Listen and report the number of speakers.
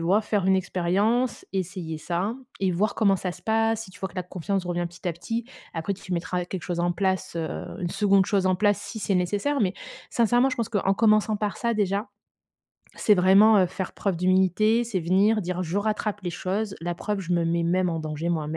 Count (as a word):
one